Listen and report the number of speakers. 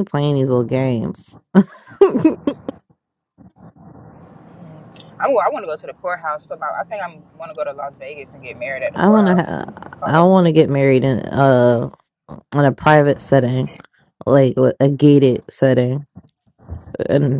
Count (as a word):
two